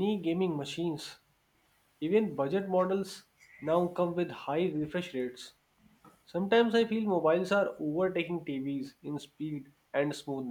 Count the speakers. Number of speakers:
1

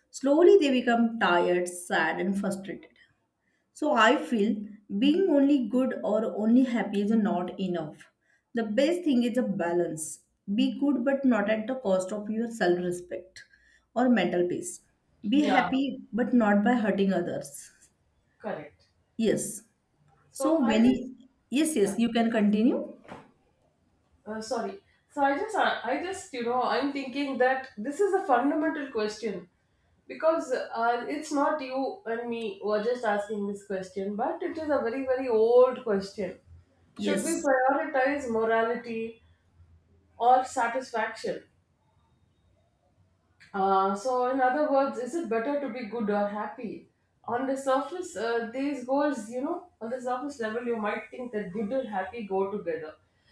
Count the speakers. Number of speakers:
2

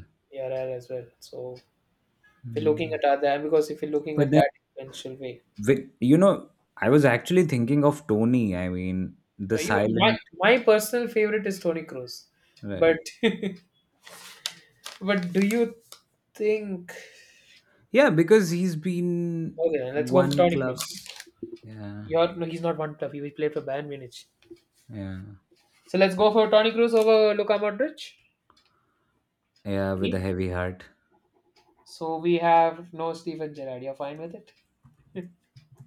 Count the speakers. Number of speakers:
2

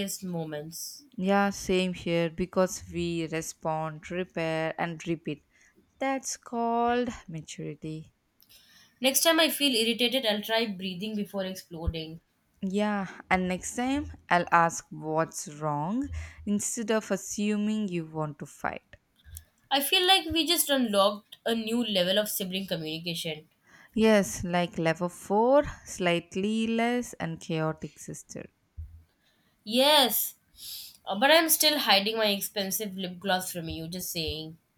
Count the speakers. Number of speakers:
2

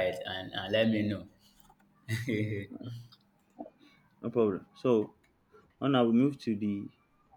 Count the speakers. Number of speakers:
2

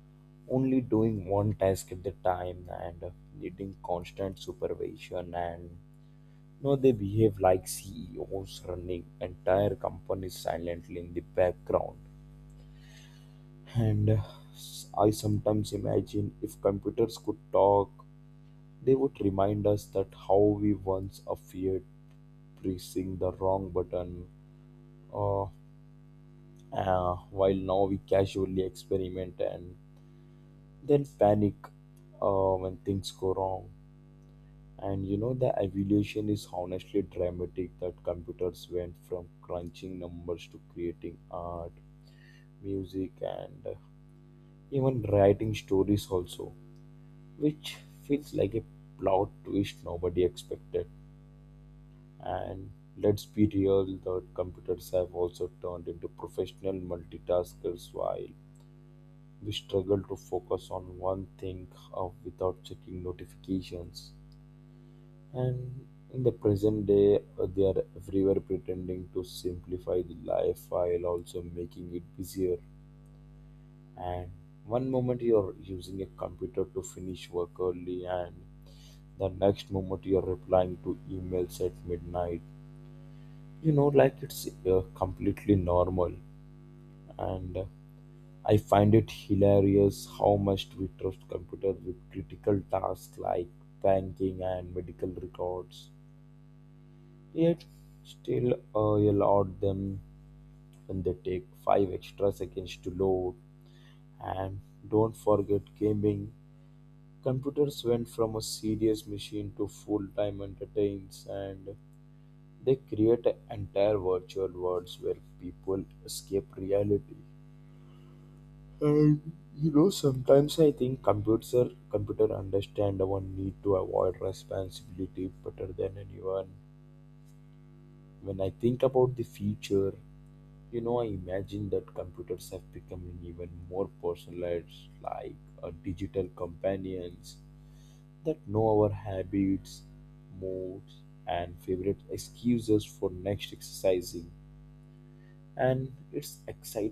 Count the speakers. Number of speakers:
1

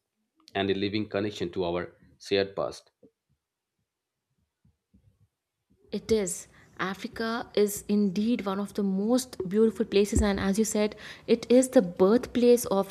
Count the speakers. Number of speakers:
2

